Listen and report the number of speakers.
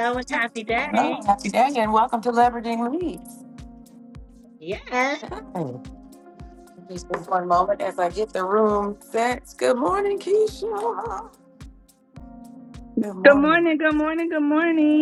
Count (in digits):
3